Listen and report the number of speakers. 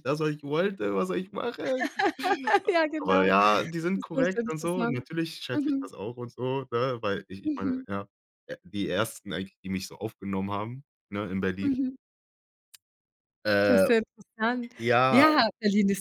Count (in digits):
2